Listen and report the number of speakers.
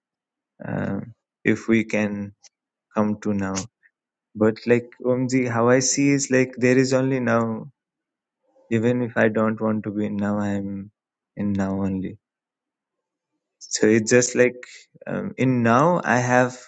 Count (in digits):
1